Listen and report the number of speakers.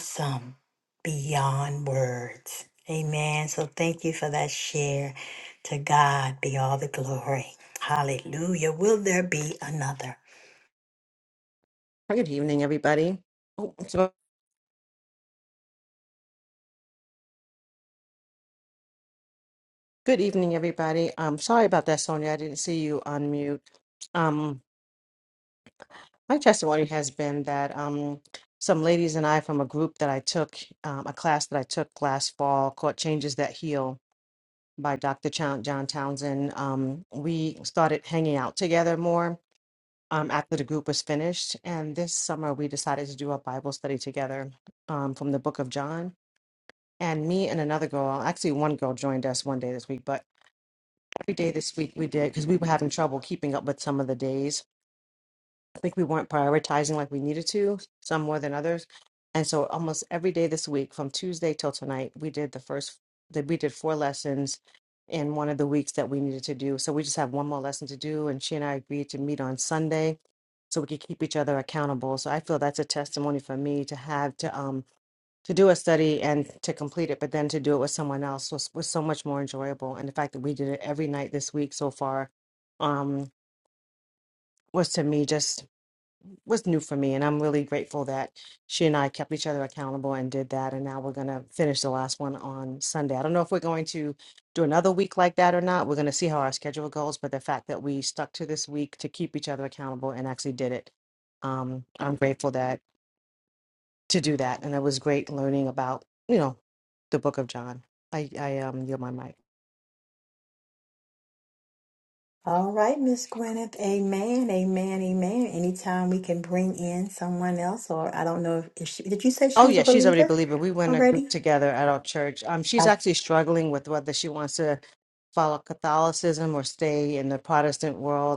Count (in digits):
2